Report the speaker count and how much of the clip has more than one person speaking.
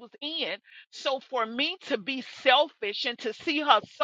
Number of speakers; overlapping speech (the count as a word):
one, no overlap